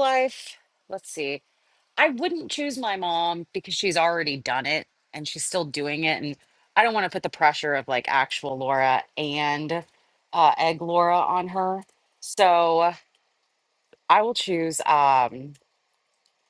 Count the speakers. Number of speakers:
1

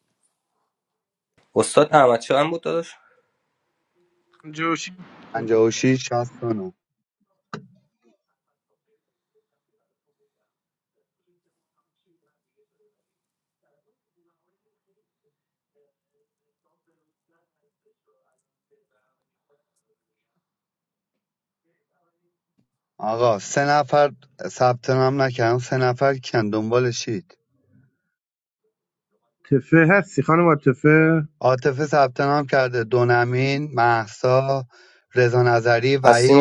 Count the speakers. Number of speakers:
3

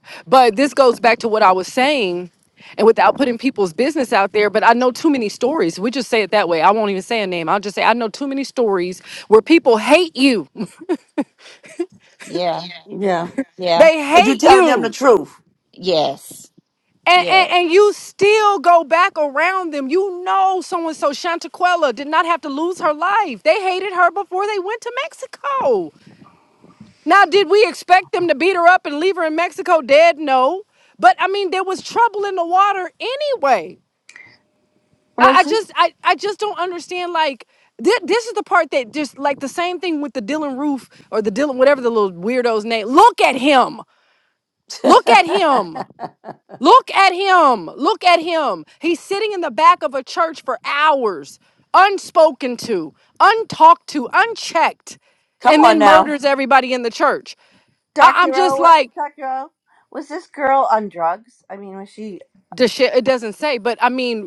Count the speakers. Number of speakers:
4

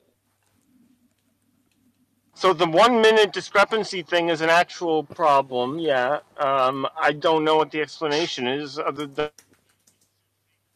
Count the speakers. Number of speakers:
1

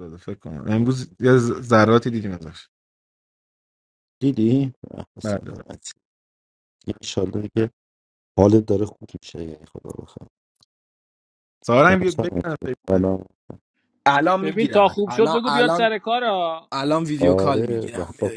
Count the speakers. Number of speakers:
4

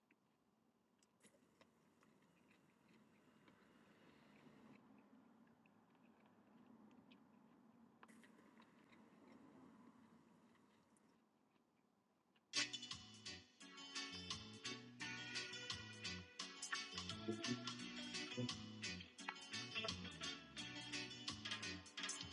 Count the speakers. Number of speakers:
0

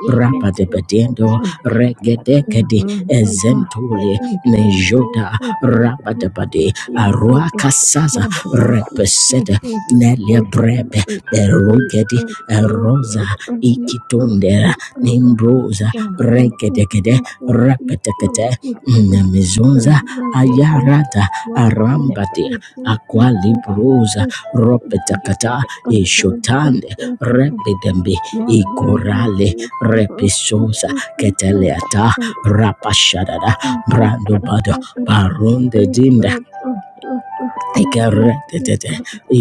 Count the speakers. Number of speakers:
3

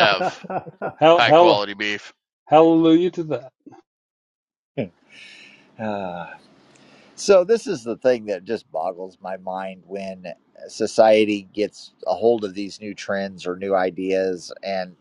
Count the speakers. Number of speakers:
3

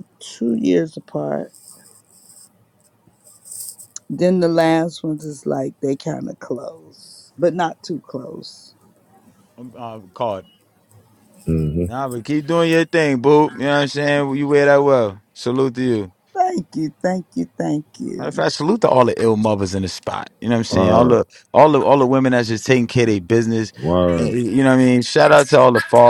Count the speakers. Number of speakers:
3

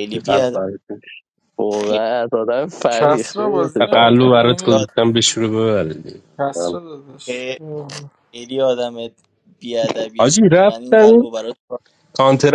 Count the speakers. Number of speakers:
4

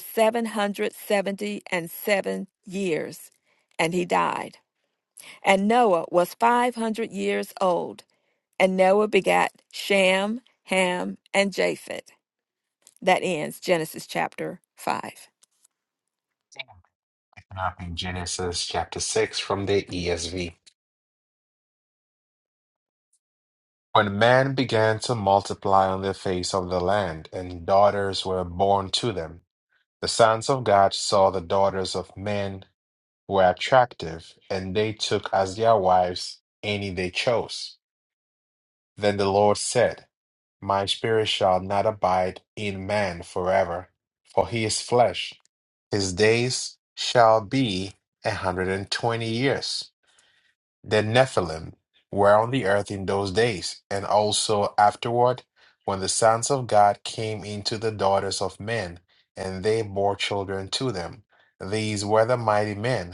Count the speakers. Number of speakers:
2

